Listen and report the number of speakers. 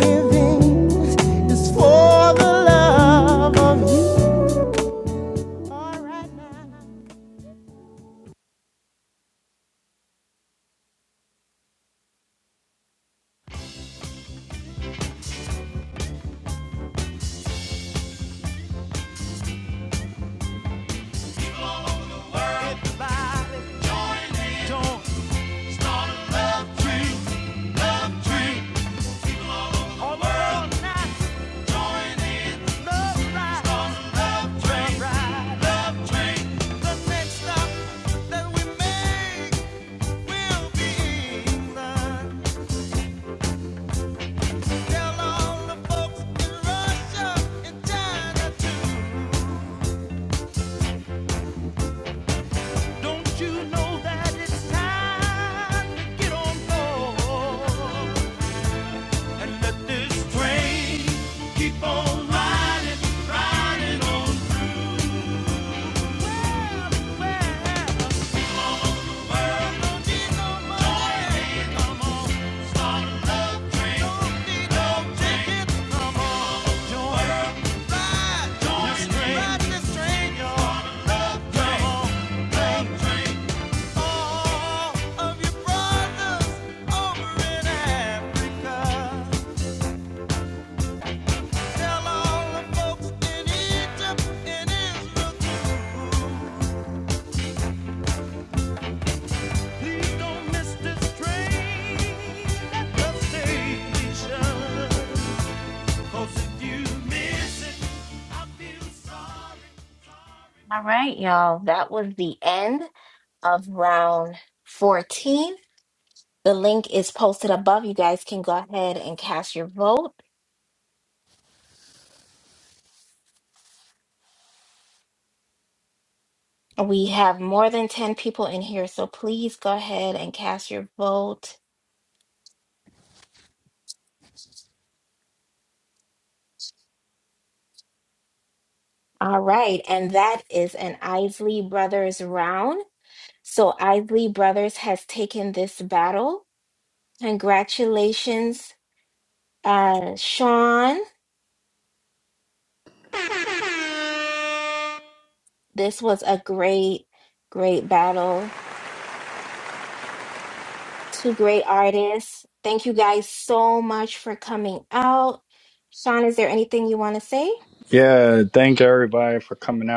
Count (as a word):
four